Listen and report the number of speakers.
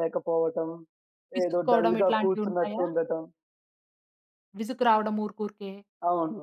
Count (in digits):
2